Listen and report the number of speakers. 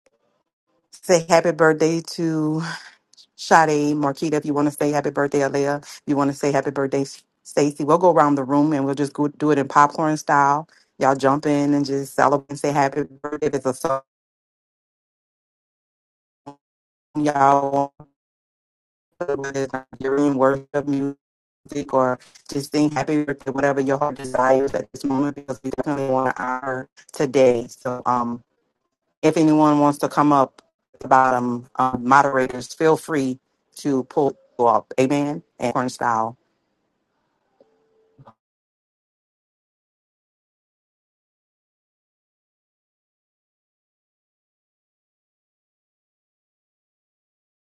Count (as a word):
one